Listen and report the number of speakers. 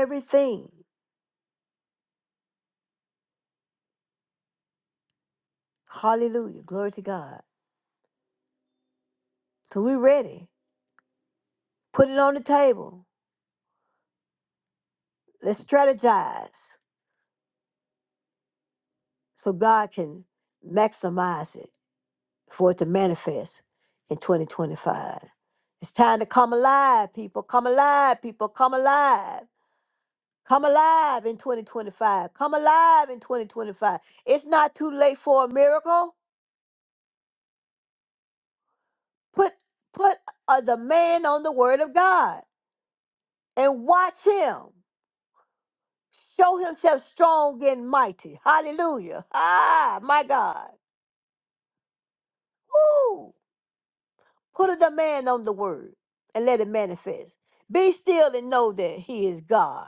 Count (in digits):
1